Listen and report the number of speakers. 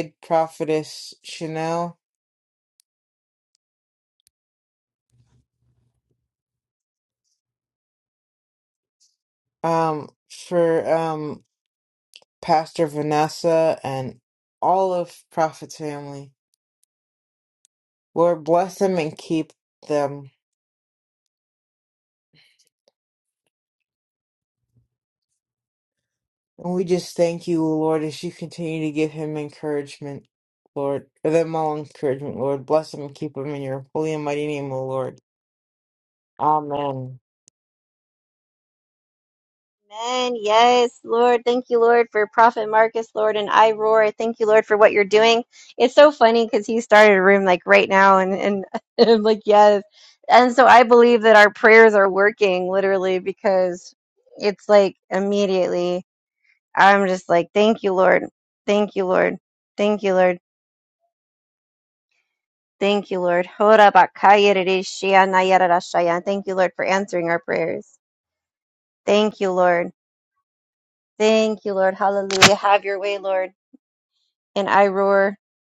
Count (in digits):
2